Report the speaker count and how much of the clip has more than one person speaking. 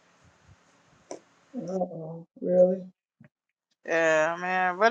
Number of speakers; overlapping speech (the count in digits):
2, no overlap